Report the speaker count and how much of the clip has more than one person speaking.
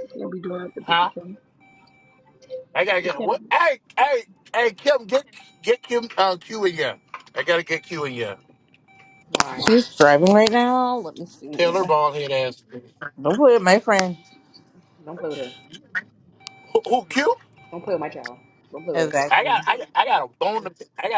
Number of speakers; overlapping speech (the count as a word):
four, about 6%